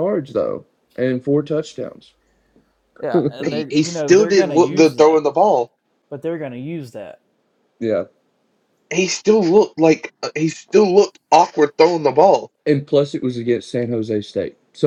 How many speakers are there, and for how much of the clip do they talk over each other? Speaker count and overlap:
three, about 12%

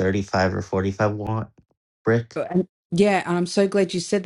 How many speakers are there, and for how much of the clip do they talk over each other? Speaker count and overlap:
two, no overlap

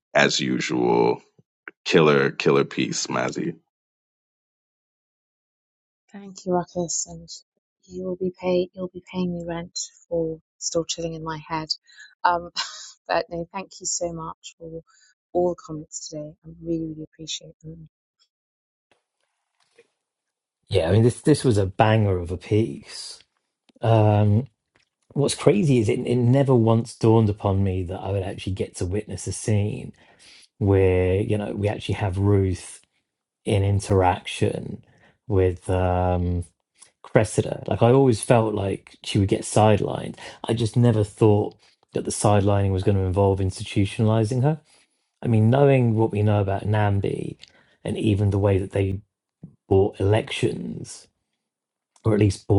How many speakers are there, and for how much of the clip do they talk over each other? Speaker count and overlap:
three, no overlap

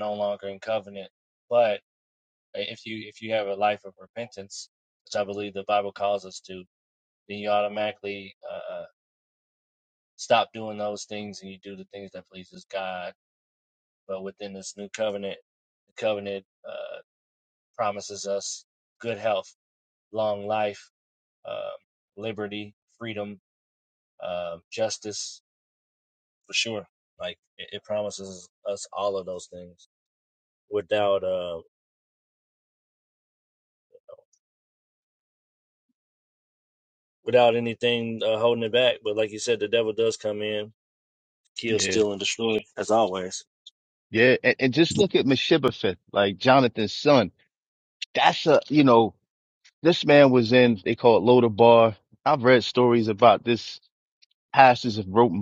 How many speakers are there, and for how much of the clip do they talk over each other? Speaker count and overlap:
two, under 1%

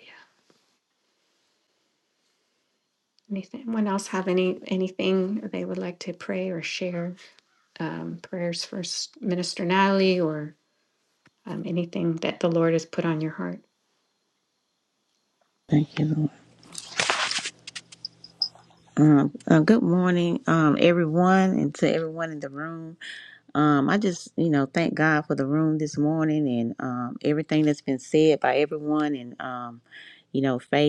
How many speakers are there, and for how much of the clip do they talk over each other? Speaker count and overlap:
two, no overlap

